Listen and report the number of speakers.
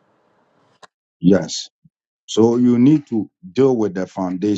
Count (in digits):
1